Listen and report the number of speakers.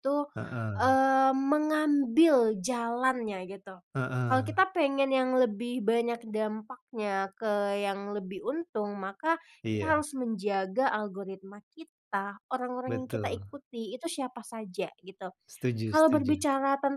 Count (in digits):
2